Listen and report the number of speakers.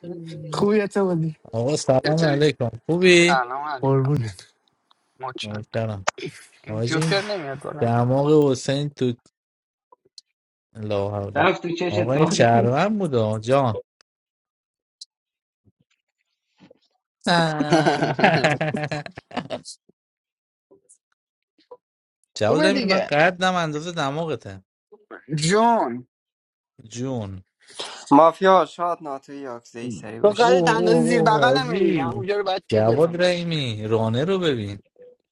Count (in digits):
5